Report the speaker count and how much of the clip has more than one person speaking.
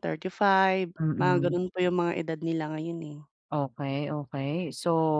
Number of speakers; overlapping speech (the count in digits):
2, about 11%